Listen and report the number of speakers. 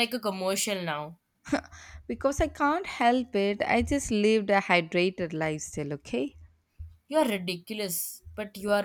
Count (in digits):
2